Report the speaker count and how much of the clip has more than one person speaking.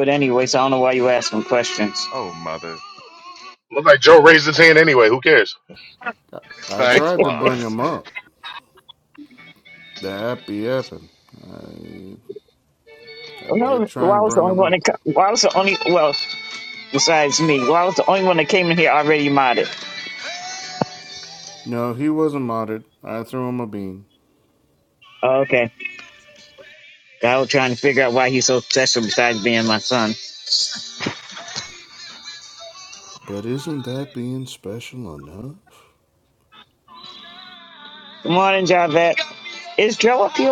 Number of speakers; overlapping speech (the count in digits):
4, about 5%